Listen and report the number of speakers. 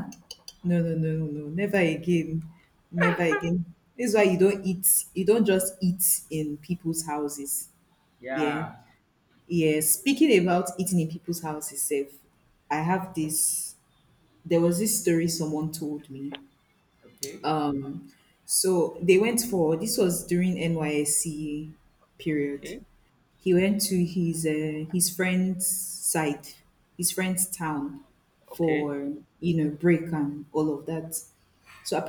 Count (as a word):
two